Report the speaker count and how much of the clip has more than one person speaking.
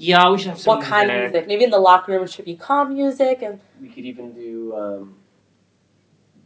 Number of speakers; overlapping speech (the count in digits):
3, about 14%